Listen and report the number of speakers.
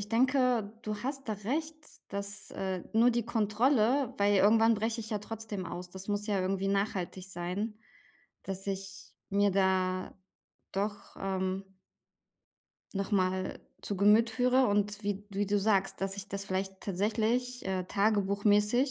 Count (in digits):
1